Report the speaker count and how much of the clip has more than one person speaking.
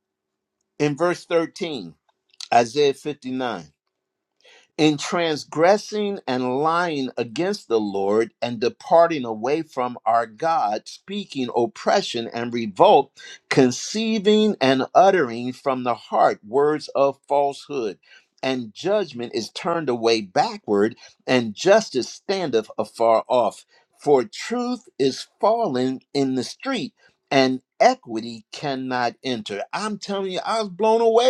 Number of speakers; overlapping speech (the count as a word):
one, no overlap